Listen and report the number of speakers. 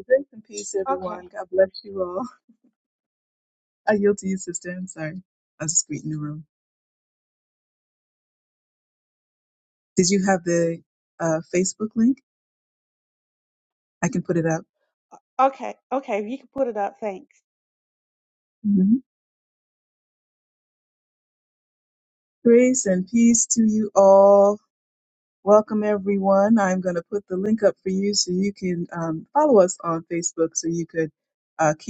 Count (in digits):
2